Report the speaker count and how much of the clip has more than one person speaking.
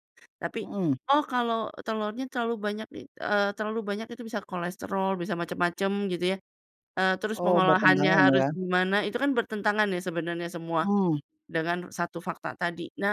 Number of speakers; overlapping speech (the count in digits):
2, about 10%